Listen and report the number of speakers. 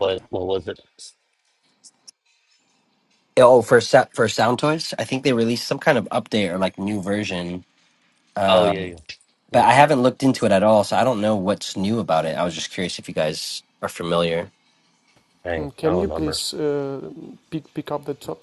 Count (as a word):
three